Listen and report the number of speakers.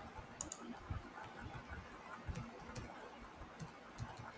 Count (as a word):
zero